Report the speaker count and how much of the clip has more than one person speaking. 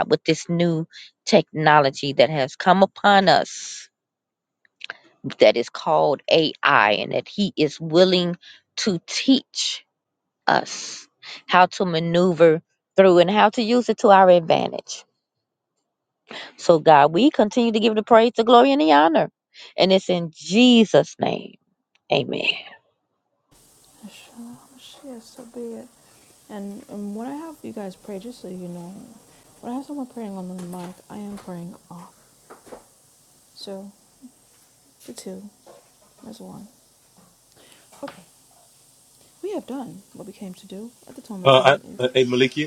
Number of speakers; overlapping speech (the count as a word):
three, about 1%